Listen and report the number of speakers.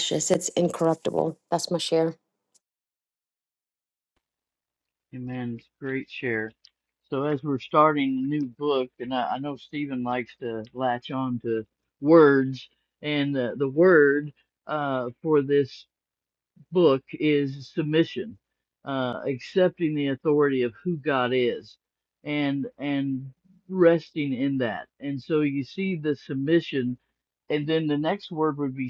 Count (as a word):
two